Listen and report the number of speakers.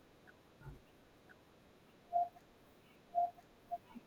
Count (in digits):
0